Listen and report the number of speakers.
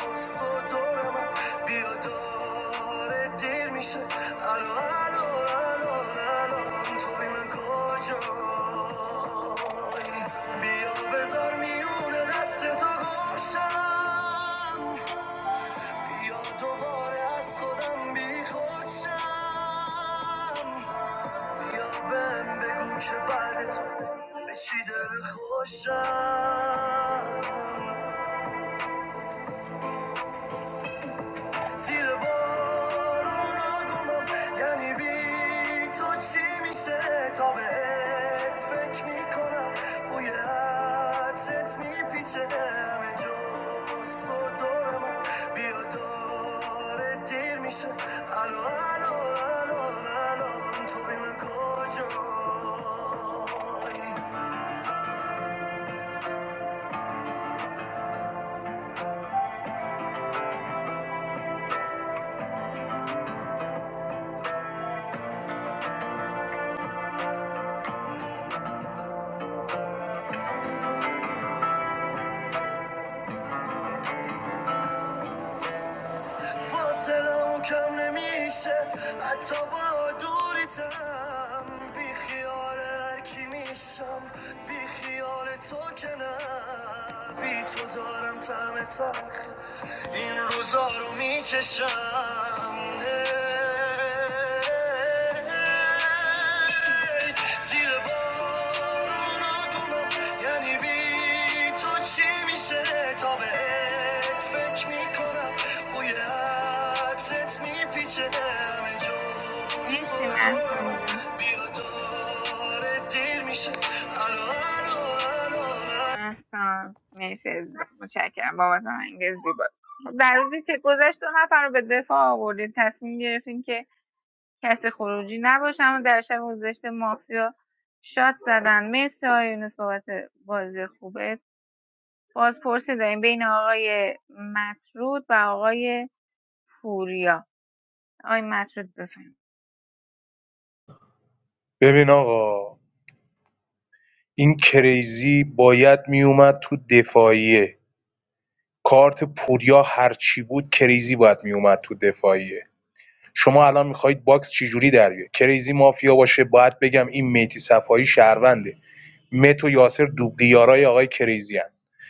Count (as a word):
three